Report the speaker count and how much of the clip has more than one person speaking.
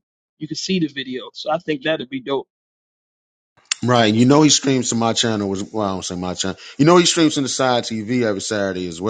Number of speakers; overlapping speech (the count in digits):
2, no overlap